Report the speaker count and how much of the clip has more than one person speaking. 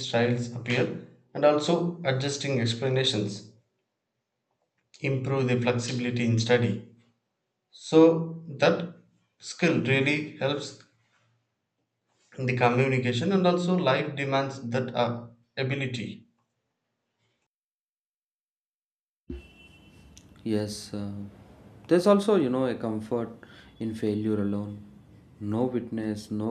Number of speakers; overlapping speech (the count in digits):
2, no overlap